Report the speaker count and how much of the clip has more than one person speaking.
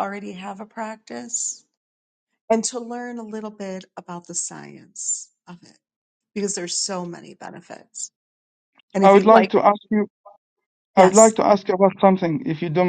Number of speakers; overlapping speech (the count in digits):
2, about 5%